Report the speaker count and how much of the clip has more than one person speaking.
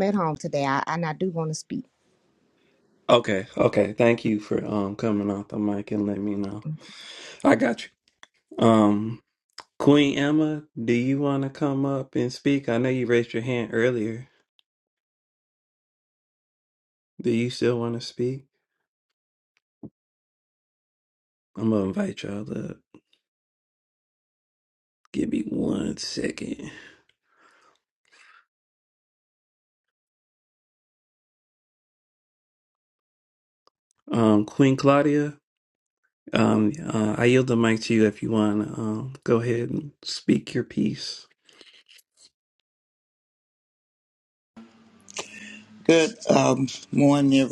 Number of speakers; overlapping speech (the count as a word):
three, no overlap